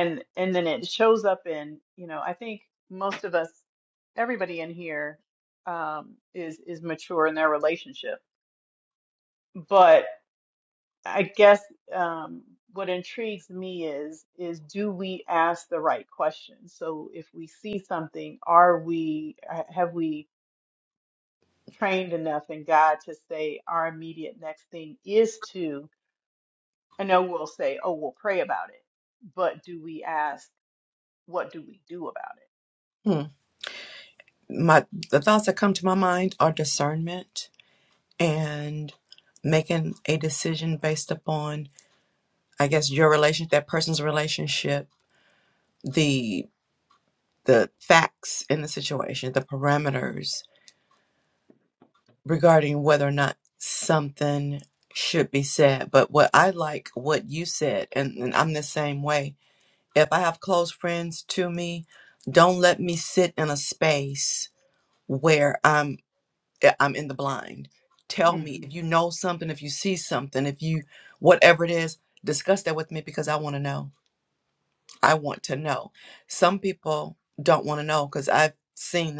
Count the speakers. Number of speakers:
2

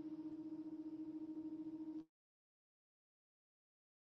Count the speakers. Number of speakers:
0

